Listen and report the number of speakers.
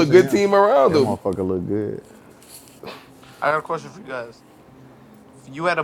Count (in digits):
3